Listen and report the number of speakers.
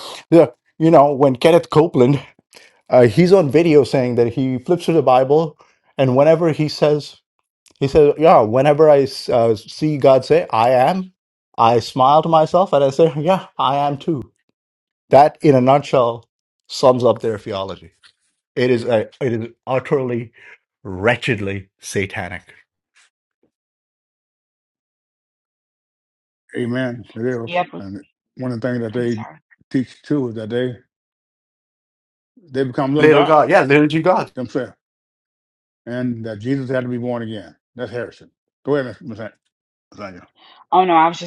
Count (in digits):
3